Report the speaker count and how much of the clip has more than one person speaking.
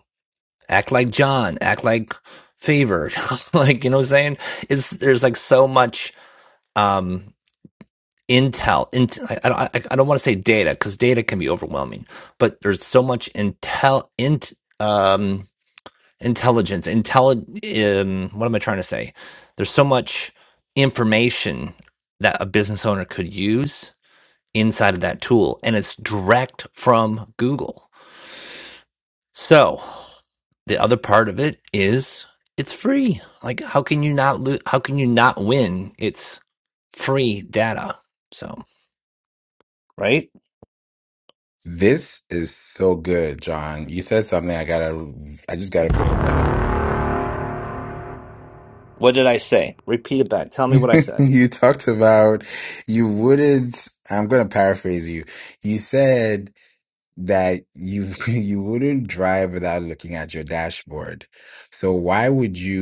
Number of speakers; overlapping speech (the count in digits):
2, under 1%